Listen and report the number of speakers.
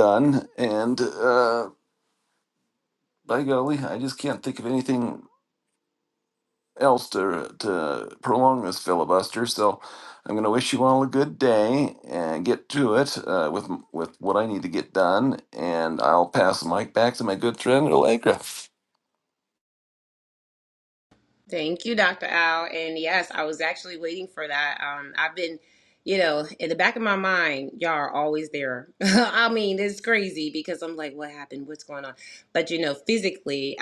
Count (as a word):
two